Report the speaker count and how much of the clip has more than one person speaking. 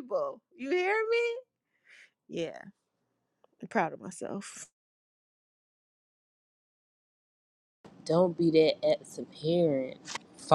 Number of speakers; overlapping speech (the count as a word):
two, no overlap